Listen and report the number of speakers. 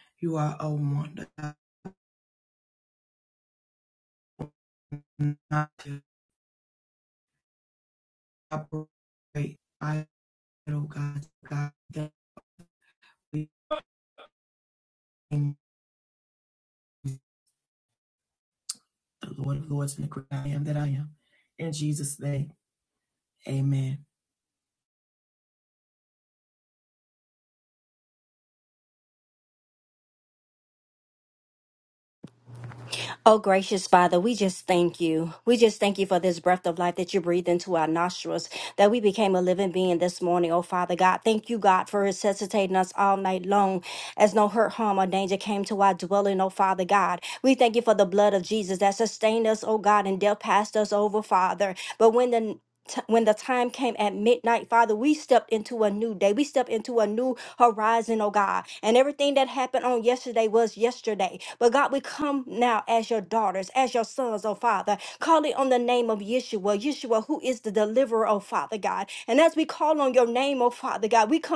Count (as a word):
two